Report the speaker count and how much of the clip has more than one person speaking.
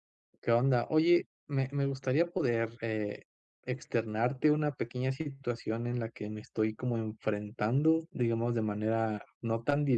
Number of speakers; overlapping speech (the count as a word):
one, no overlap